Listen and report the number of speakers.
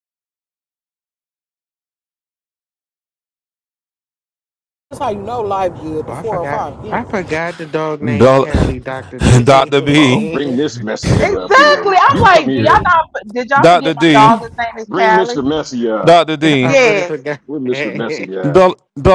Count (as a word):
five